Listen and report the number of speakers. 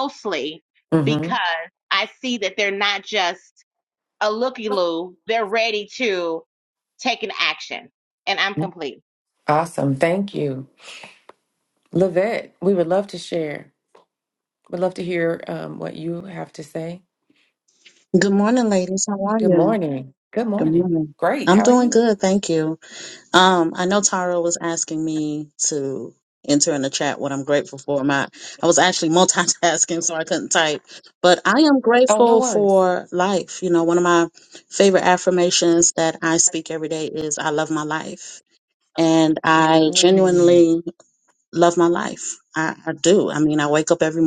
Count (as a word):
three